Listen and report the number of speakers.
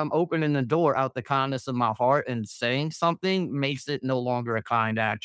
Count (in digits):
1